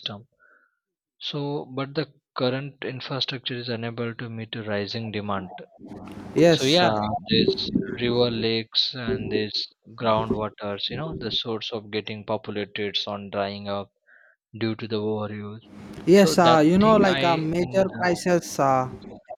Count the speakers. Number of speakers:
2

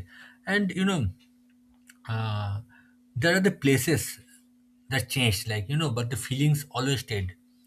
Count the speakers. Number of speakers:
1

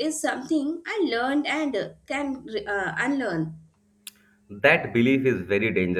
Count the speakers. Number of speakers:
2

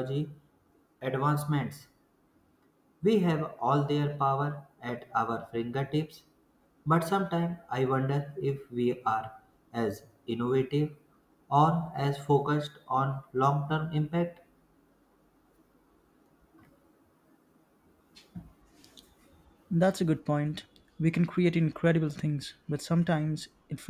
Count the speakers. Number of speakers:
2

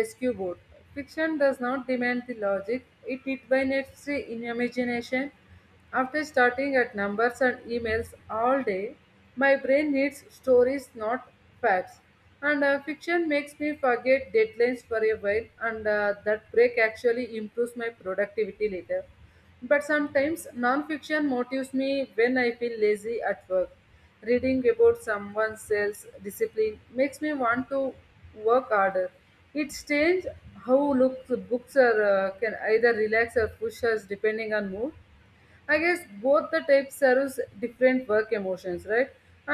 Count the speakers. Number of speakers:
1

